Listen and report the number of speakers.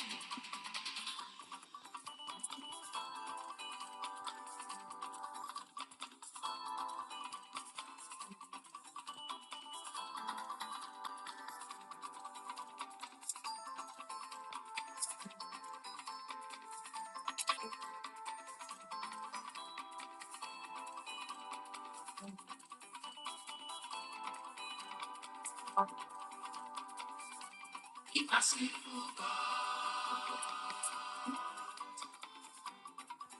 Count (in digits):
0